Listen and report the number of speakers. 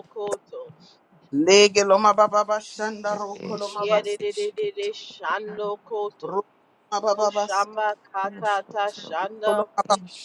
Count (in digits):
3